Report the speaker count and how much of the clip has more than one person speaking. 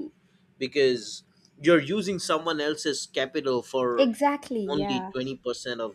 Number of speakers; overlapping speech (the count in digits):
2, about 10%